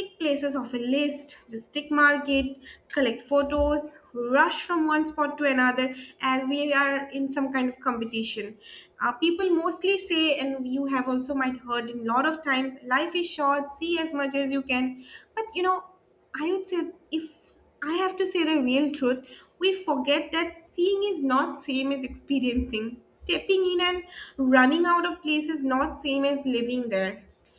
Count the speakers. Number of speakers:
one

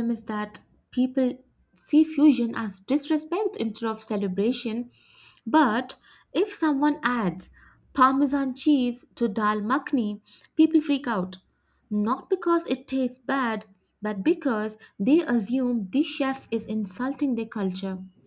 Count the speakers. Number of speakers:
one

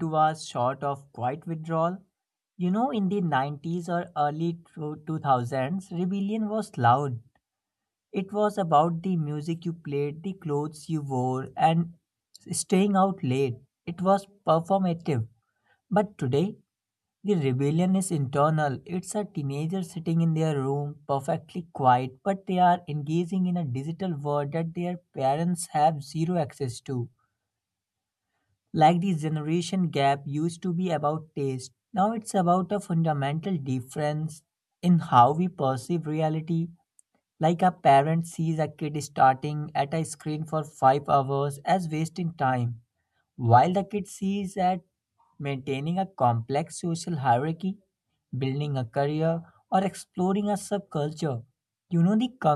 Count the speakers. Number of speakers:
one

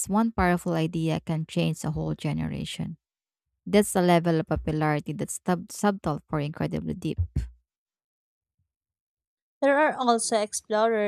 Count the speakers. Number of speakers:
two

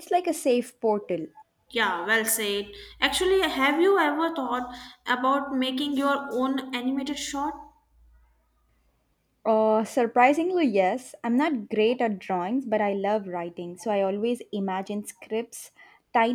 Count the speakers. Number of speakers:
two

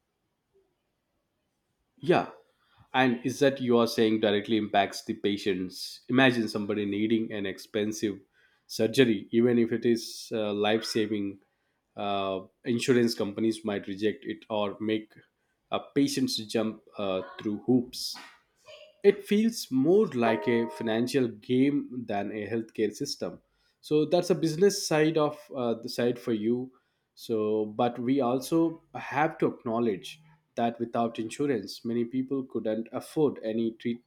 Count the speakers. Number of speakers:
one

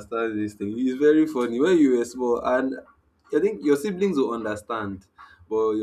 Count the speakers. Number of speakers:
one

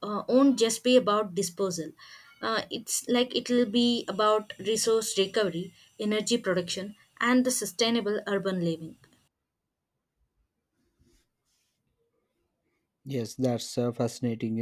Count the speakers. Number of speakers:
two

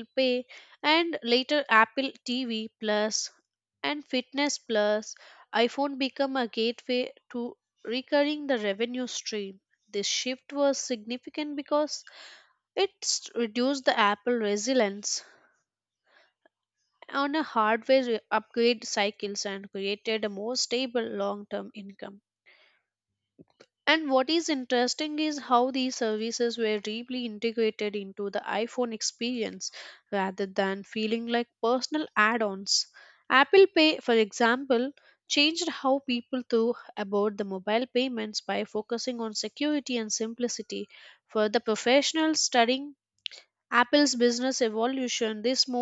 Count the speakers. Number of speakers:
one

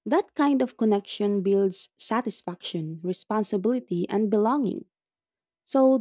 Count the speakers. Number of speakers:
one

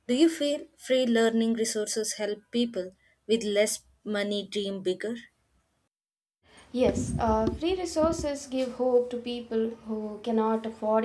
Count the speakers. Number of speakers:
two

